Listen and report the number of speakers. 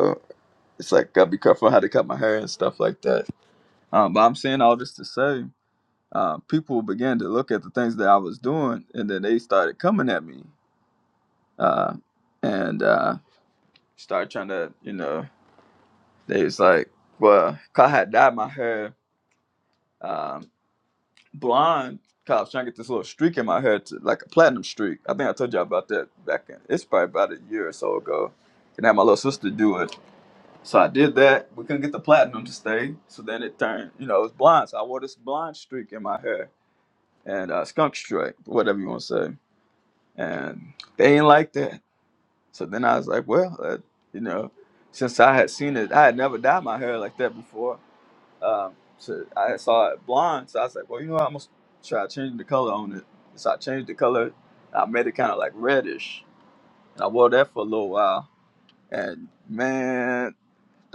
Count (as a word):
one